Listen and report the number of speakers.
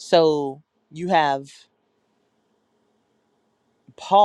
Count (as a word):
one